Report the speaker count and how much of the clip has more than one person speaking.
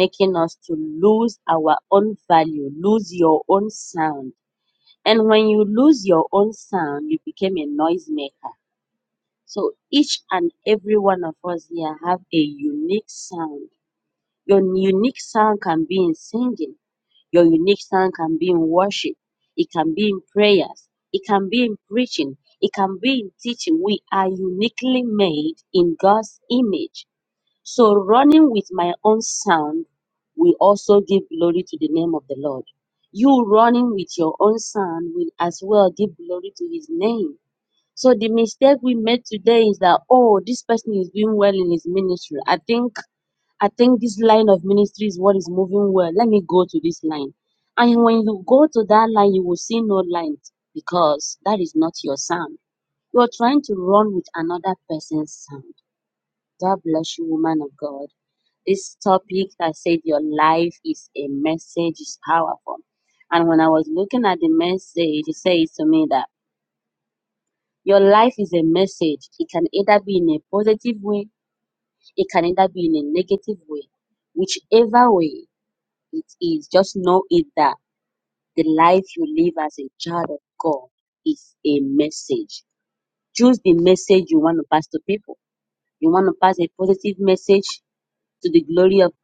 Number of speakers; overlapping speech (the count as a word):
one, no overlap